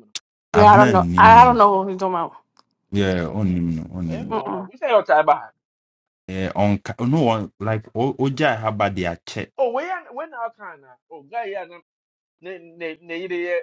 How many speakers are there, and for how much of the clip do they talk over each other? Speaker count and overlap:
3, about 13%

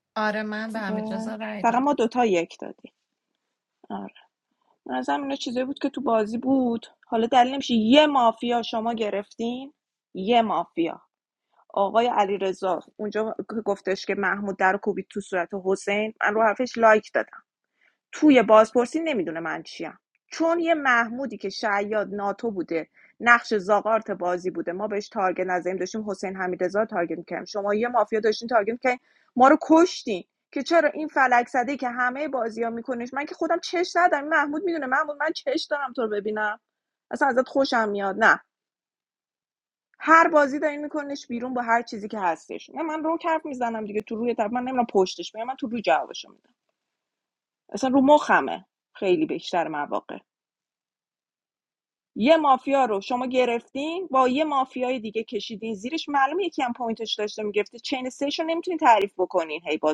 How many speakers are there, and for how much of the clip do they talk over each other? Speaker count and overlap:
2, about 2%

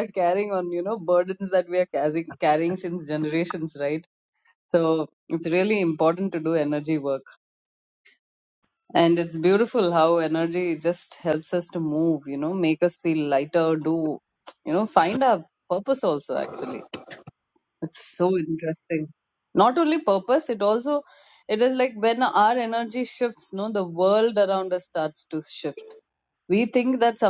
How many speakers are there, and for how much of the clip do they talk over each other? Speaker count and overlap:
1, no overlap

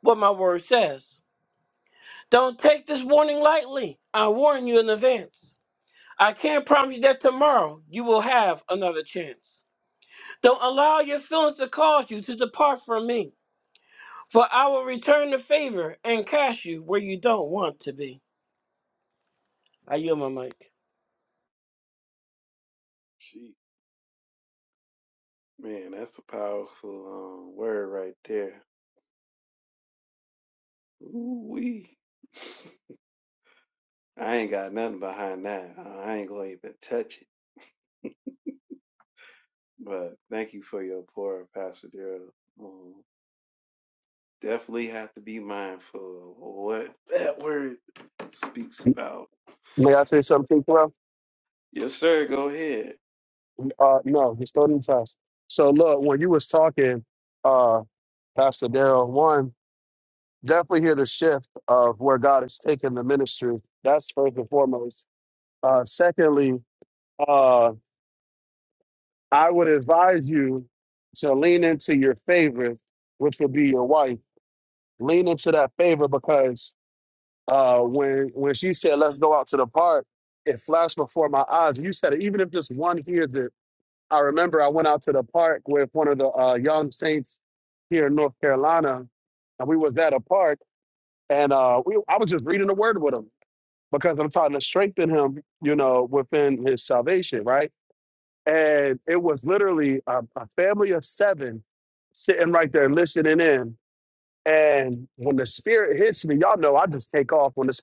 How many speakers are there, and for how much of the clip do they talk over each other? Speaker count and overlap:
3, no overlap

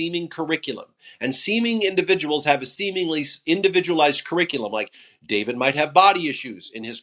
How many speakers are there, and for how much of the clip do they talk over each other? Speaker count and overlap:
1, no overlap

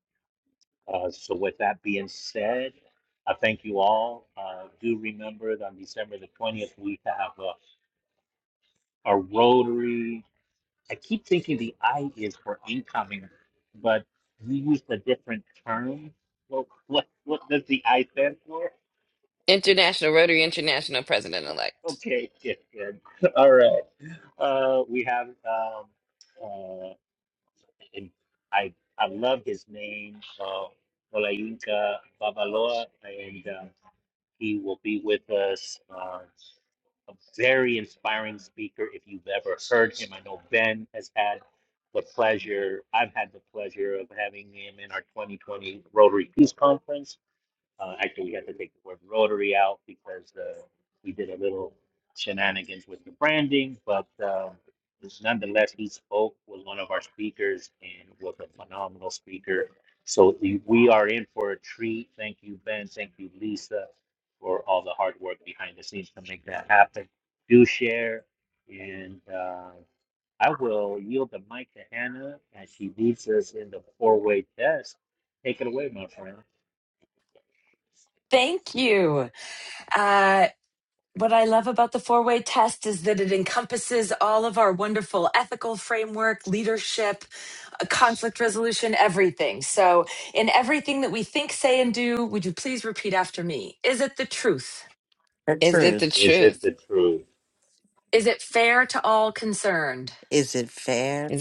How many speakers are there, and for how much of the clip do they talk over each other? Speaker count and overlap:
4, about 1%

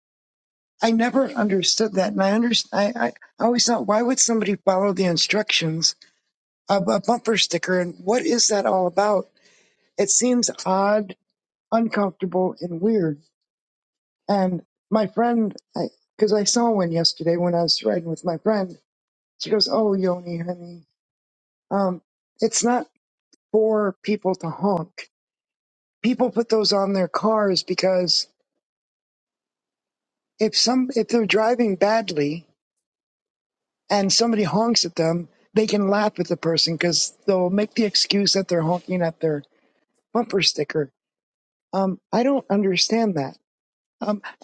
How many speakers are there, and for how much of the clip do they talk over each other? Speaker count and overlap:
1, no overlap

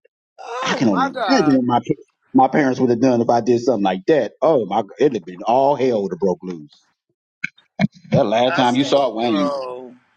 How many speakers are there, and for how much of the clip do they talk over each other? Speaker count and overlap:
2, about 20%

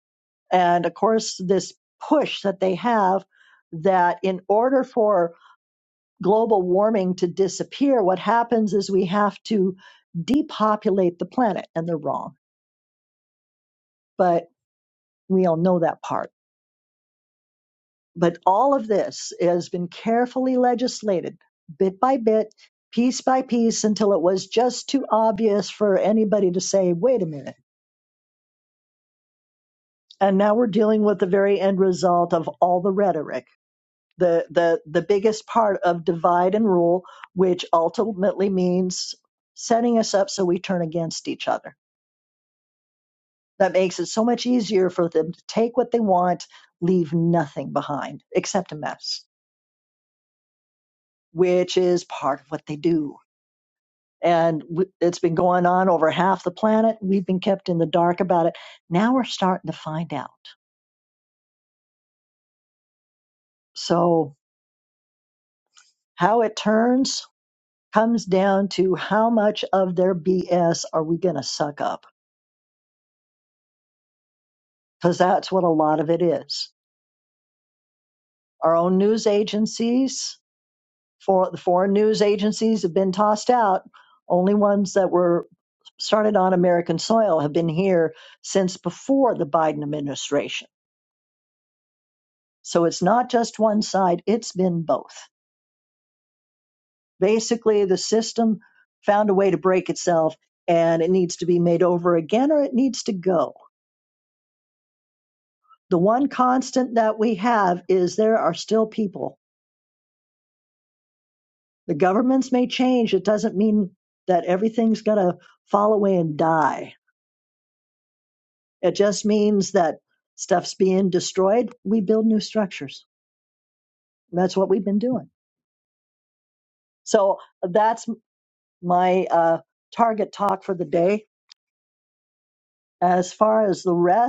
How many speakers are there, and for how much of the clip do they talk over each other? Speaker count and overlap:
1, no overlap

